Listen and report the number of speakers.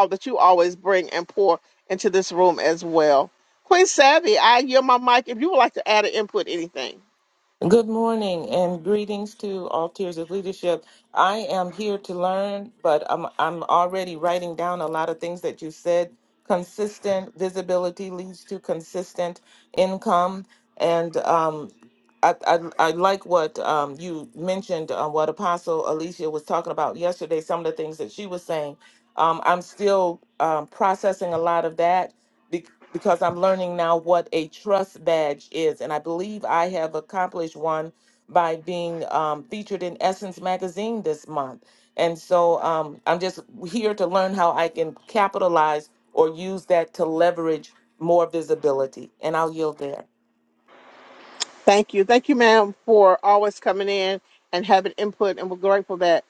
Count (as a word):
two